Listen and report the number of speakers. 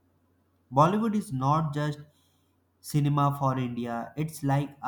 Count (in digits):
1